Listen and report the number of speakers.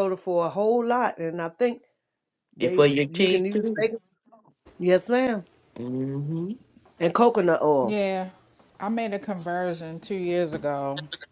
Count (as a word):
three